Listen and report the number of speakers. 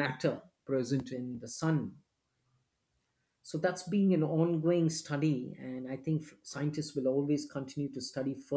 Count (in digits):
1